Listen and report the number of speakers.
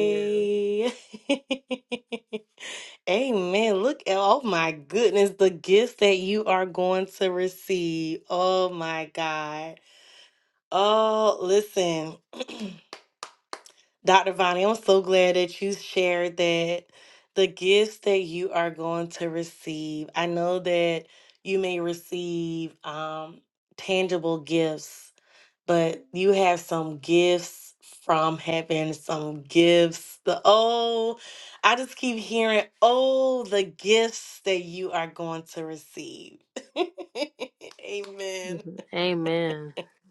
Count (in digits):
2